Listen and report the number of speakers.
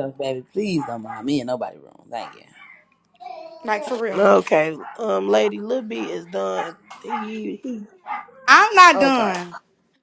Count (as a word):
three